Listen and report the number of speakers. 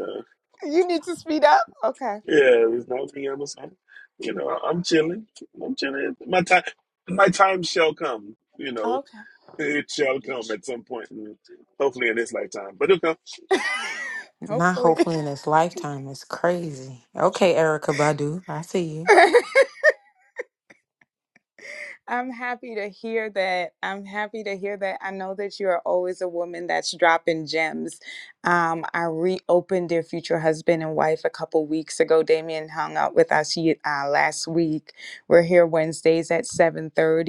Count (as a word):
three